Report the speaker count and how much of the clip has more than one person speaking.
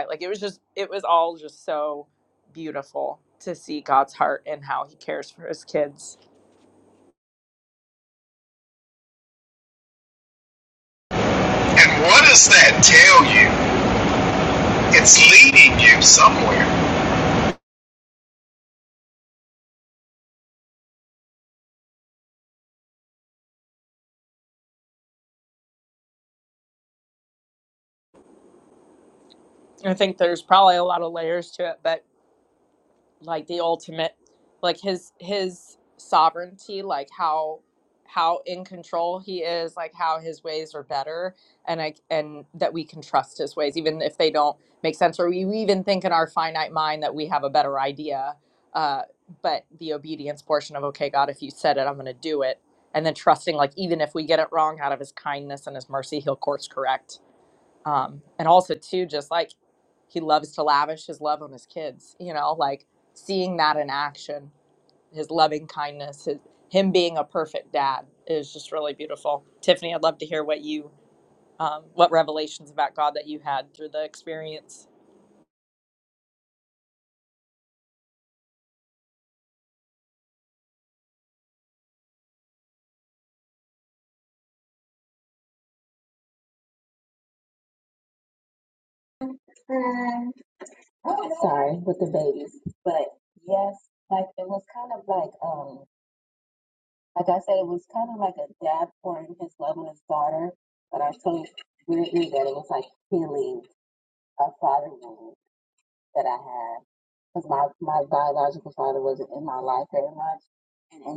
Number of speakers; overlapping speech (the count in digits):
3, no overlap